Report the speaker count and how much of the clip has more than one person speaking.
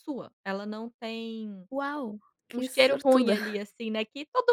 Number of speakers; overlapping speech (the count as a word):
two, about 19%